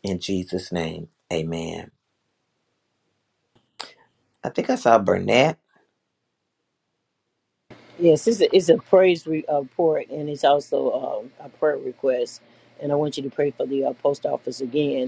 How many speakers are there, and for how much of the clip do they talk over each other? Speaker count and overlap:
two, no overlap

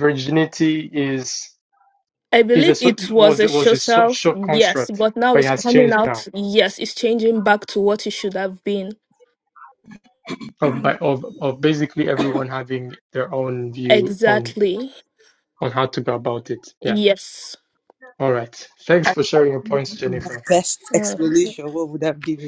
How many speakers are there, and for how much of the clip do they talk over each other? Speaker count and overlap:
three, about 21%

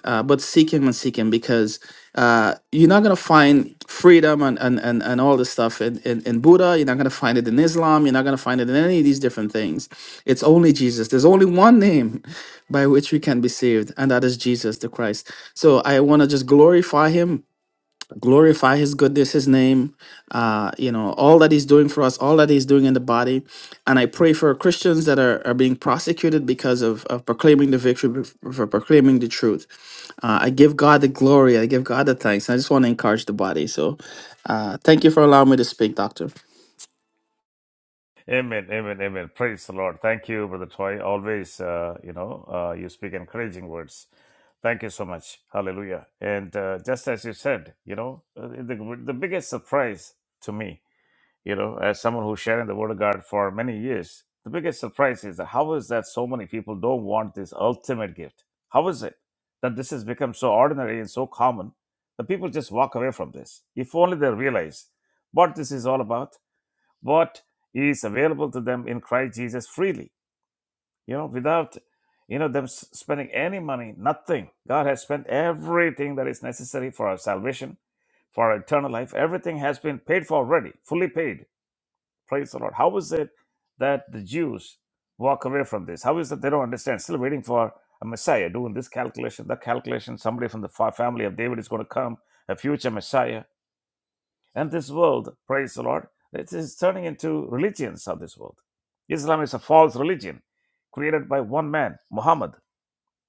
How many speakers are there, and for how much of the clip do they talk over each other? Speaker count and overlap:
two, no overlap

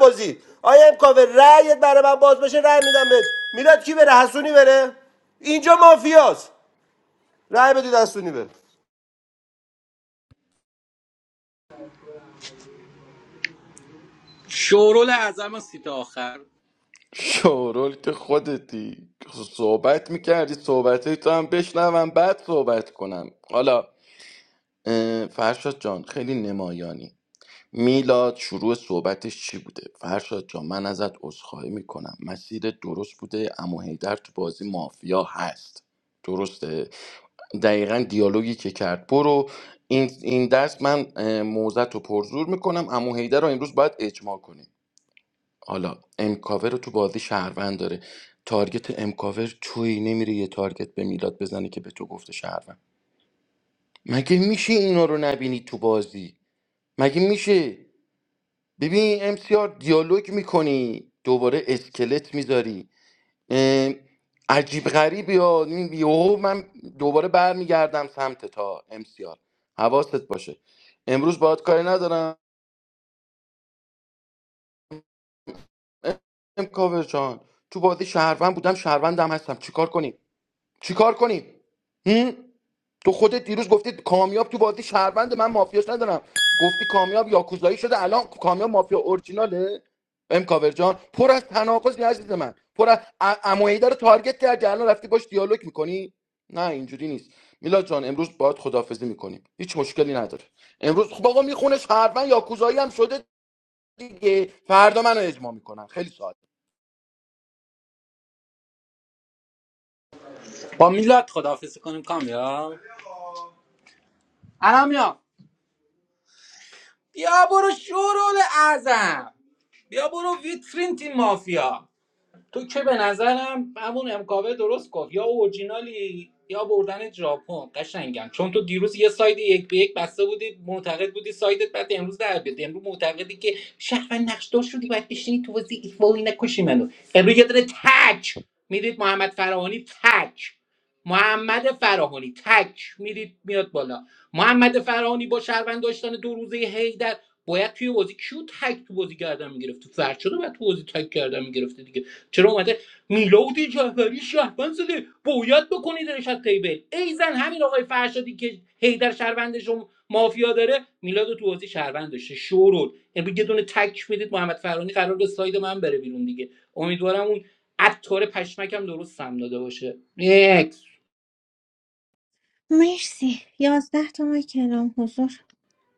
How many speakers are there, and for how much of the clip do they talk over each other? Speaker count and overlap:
four, no overlap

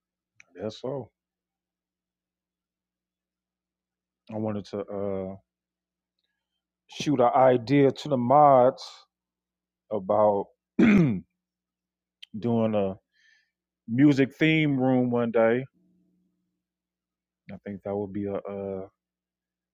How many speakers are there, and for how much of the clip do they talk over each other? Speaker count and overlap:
one, no overlap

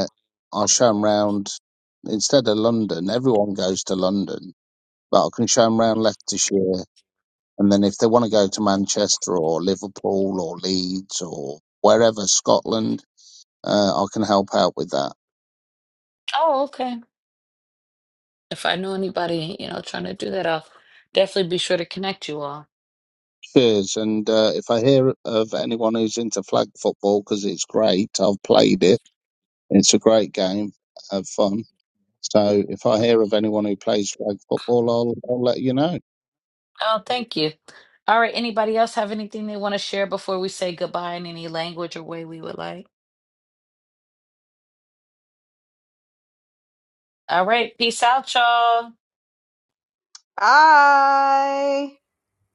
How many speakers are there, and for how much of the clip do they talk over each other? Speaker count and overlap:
three, no overlap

